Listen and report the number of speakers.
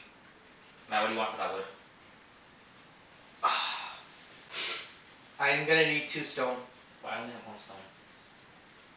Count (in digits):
2